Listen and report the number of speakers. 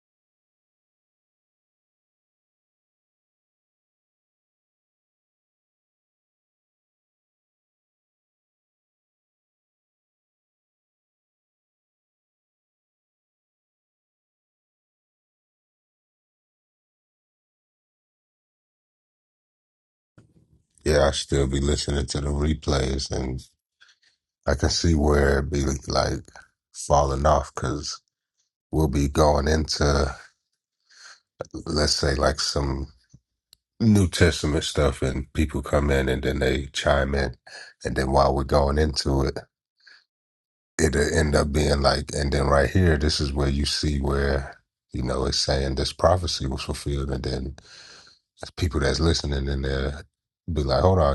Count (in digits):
1